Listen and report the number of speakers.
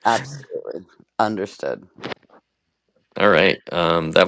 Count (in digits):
2